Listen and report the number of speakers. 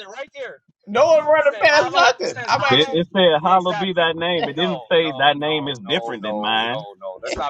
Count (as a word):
three